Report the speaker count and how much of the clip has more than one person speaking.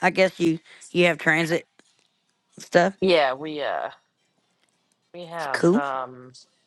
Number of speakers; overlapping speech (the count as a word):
two, about 6%